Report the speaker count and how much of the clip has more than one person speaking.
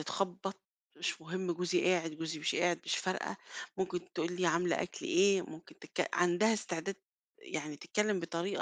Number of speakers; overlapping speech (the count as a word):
one, no overlap